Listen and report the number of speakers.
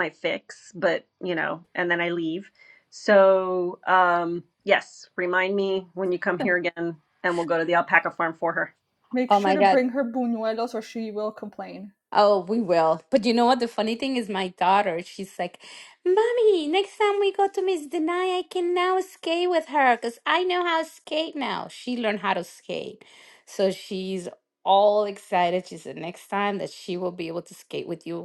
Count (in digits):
3